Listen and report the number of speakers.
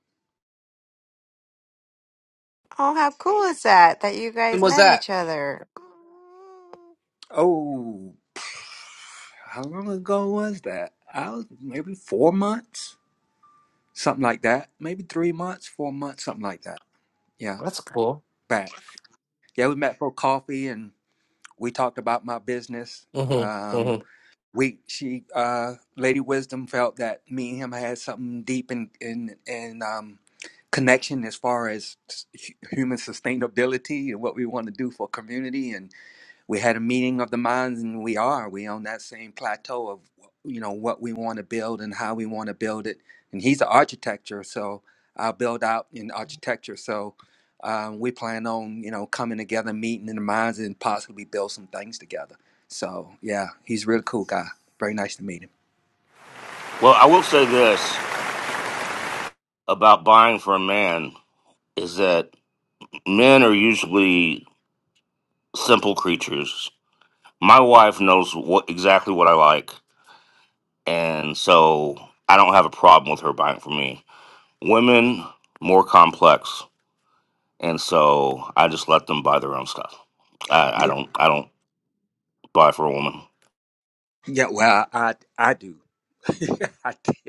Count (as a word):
four